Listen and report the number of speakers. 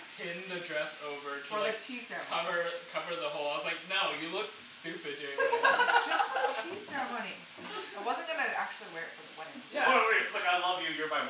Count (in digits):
3